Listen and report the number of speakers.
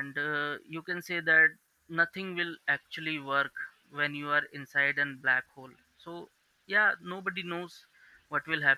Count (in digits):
1